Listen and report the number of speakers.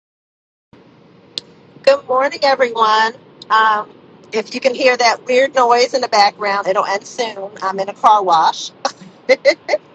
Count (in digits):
1